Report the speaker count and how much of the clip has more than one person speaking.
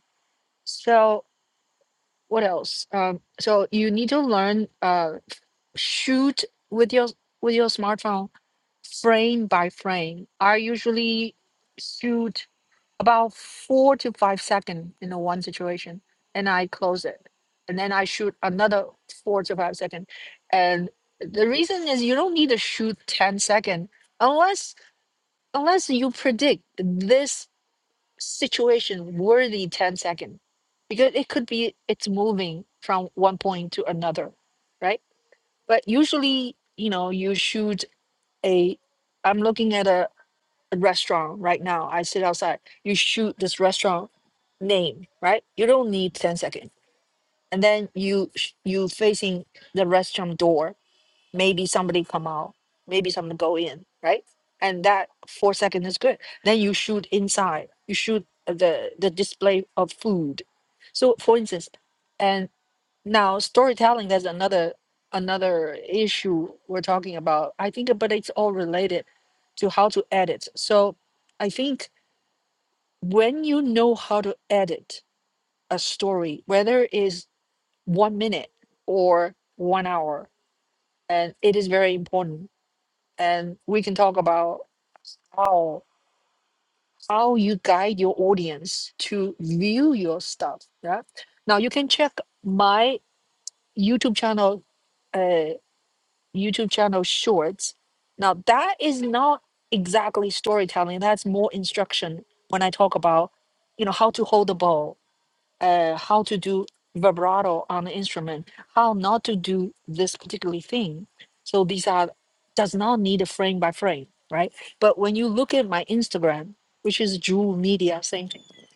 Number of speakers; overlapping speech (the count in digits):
1, no overlap